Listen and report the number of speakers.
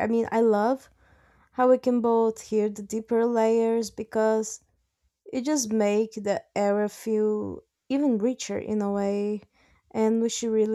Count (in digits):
1